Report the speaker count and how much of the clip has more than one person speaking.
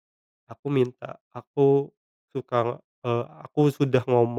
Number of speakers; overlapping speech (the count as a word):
one, no overlap